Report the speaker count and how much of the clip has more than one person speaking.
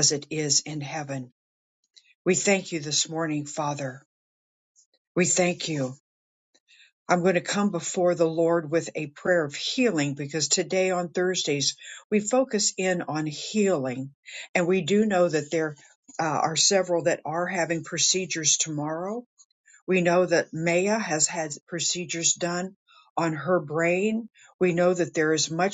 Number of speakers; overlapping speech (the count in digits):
1, no overlap